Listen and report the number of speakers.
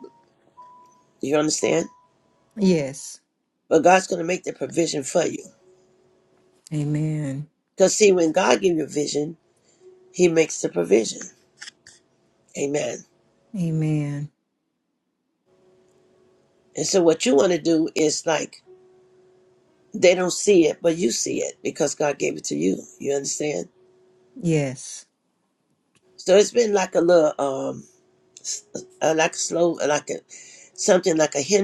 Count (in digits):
2